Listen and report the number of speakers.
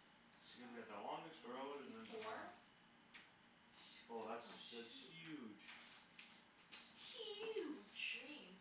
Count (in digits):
3